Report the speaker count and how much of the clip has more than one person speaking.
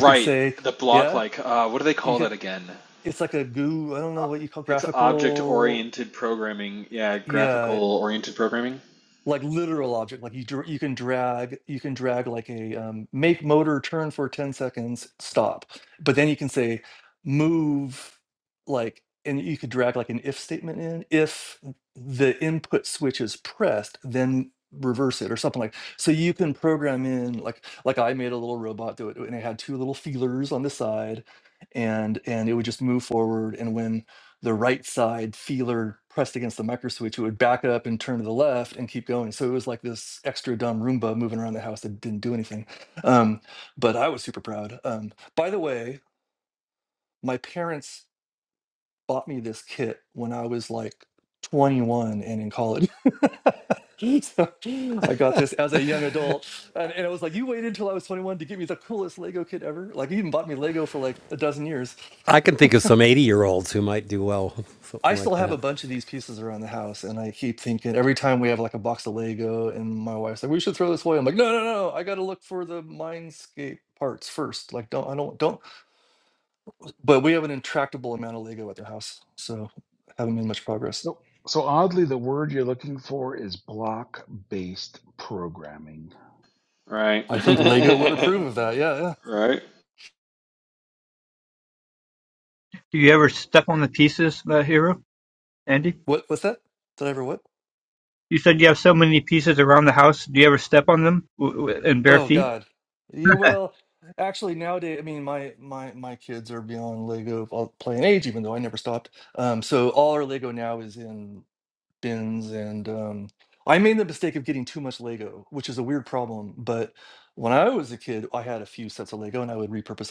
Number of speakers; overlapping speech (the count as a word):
five, about 3%